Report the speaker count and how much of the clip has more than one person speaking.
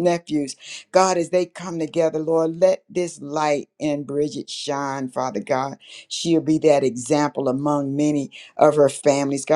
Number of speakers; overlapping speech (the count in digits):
1, no overlap